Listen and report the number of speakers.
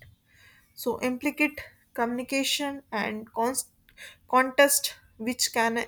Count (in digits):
1